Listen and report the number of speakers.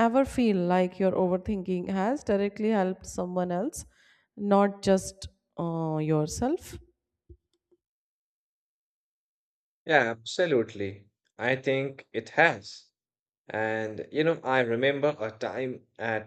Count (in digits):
2